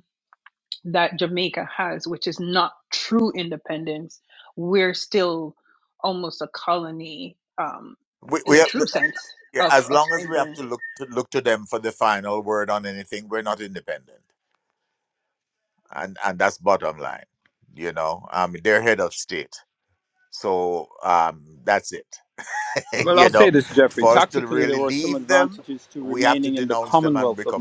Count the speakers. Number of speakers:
3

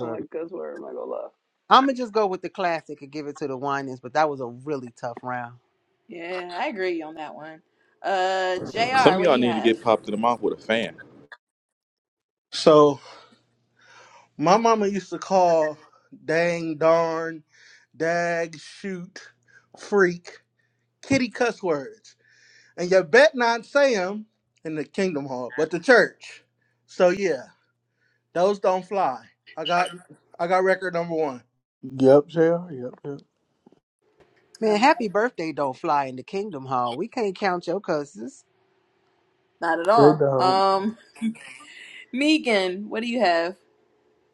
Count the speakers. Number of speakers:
6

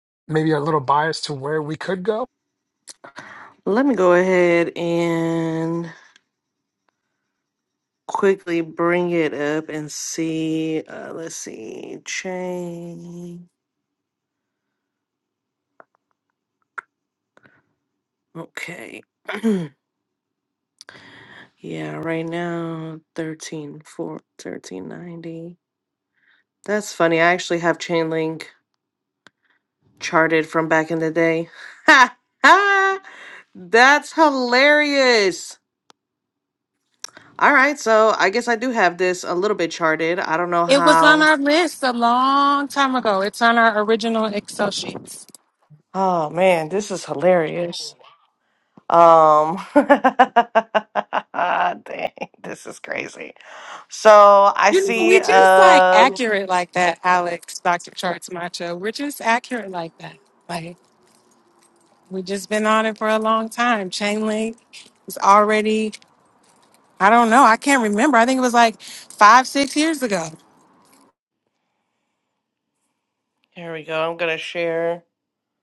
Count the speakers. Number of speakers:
3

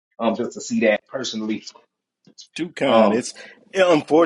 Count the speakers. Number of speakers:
2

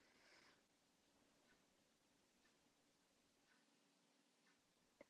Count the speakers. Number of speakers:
0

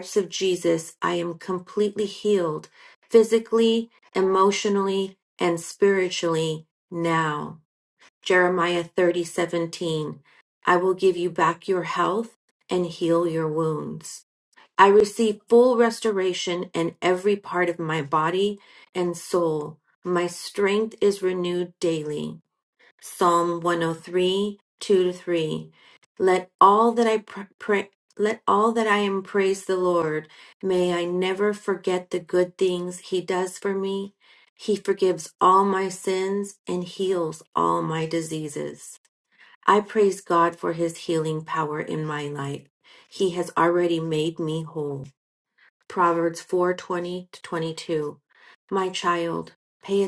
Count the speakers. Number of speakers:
1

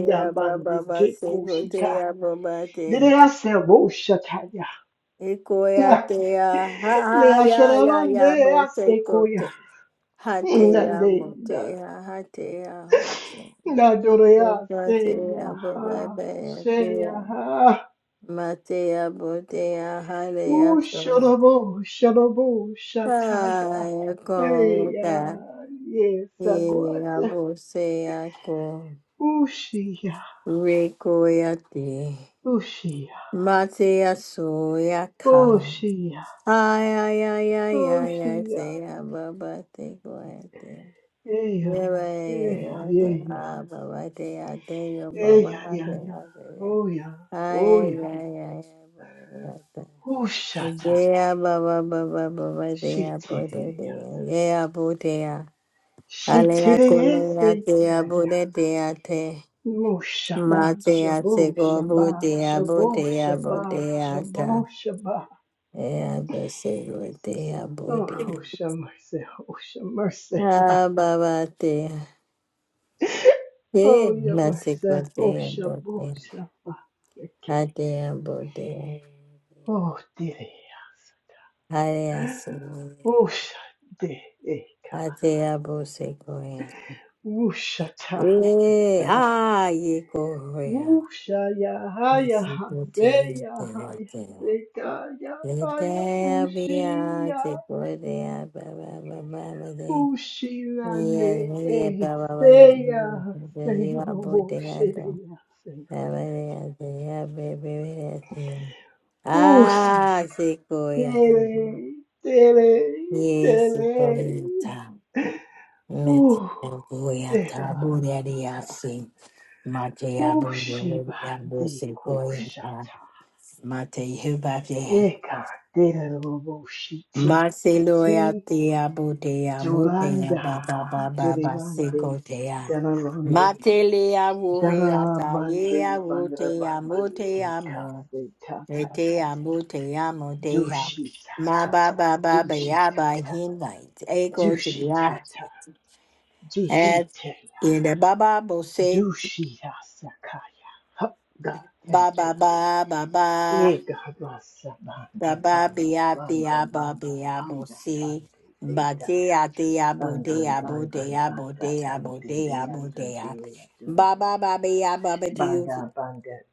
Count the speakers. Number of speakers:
2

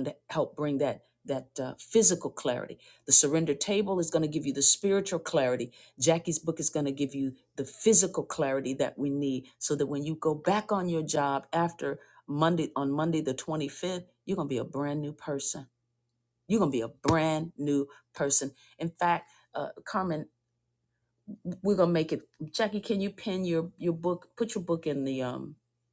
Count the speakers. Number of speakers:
1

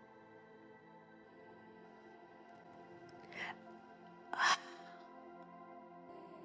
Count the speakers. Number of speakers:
0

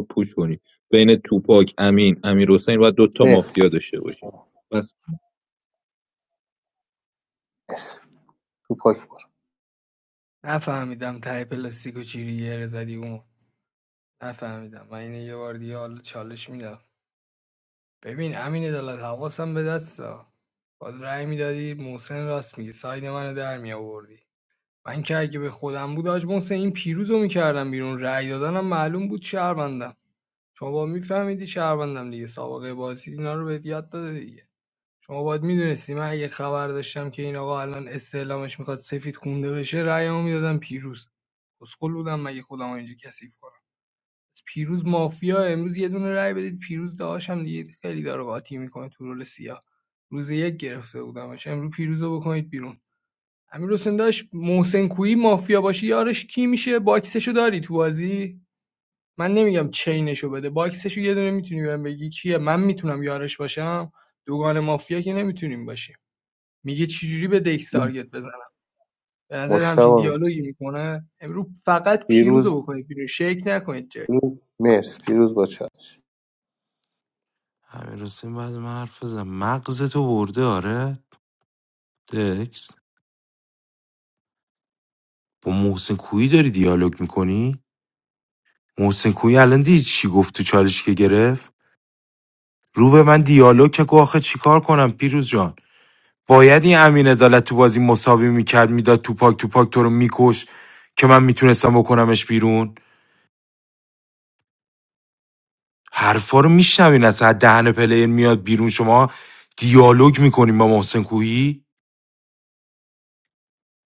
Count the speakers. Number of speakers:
4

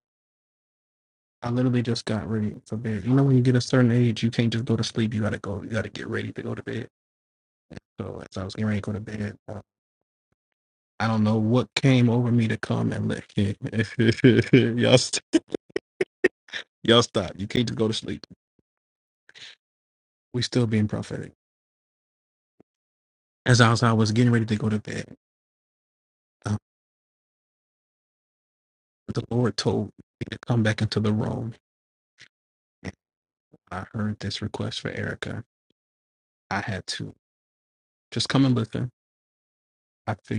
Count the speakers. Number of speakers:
1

